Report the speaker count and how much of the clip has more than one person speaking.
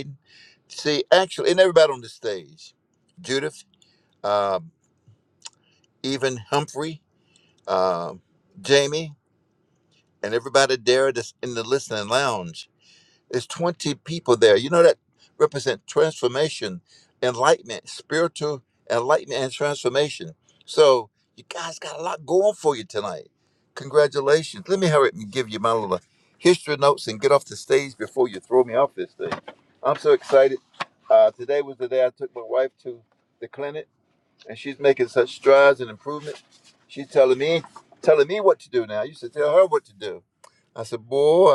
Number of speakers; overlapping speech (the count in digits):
1, no overlap